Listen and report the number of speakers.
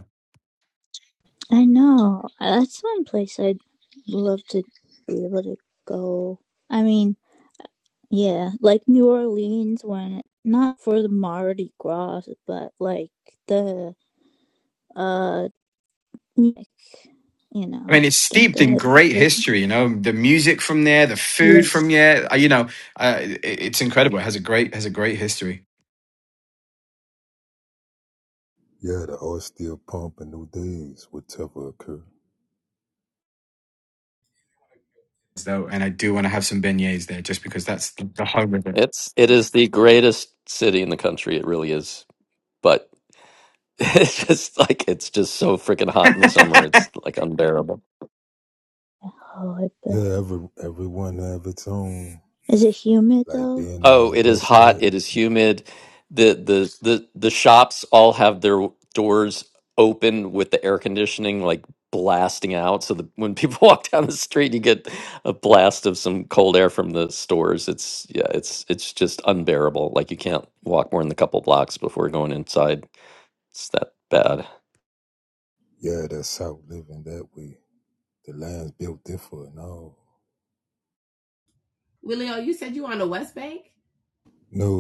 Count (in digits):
5